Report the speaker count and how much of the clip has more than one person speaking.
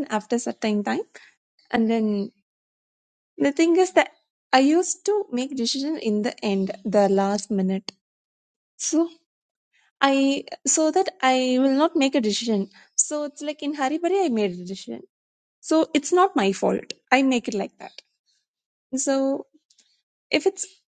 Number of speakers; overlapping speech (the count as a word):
one, no overlap